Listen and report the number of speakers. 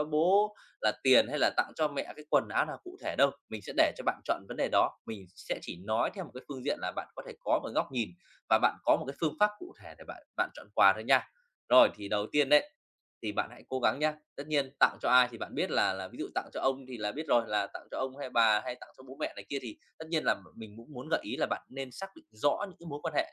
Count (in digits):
1